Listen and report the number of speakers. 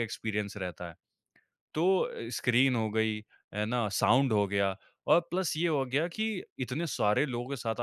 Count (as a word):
one